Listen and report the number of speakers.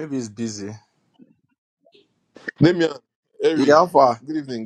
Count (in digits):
2